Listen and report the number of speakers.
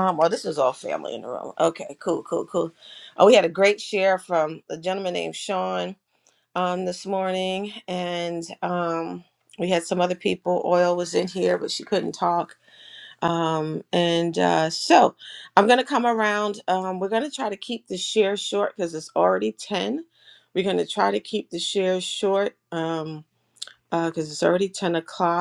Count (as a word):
one